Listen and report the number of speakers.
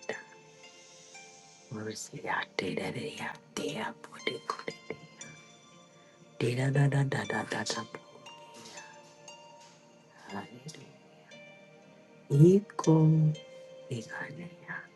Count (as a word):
one